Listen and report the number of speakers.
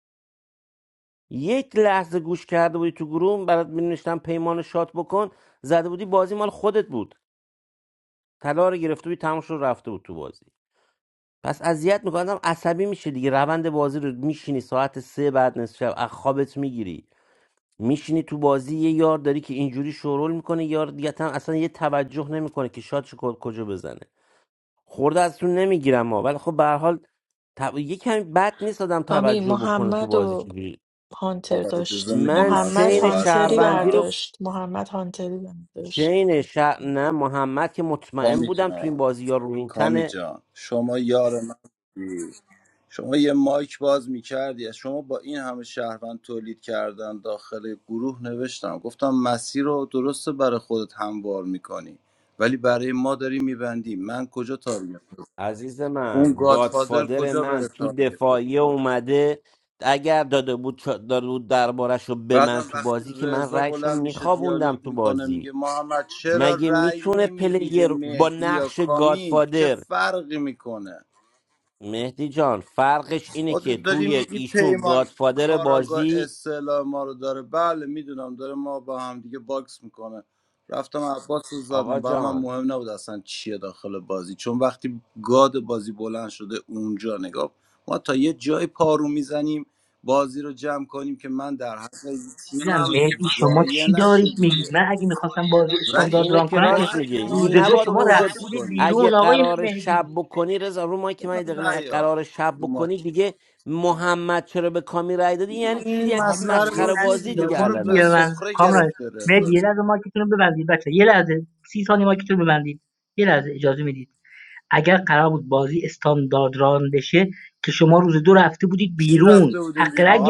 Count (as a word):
four